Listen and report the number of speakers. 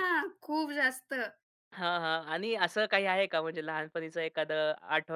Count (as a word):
two